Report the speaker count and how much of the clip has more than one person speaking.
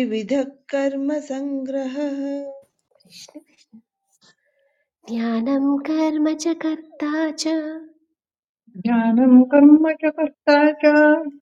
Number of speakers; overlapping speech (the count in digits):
3, no overlap